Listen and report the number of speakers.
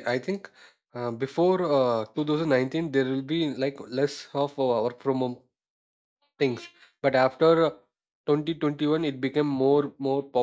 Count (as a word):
one